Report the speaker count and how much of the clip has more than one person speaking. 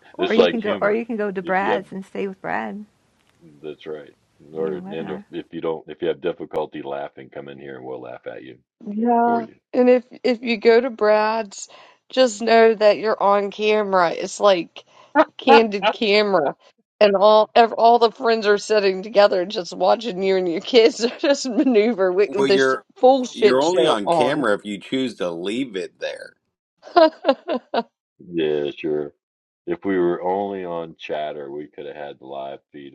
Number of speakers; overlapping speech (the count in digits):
4, about 11%